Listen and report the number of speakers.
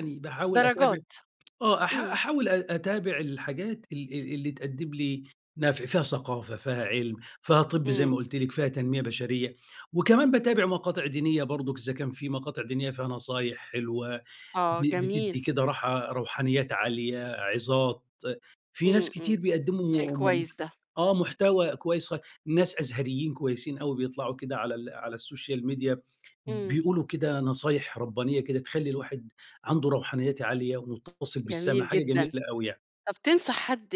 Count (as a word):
two